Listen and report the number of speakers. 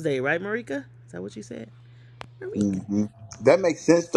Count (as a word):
two